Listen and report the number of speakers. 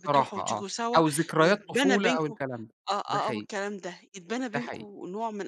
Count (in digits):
2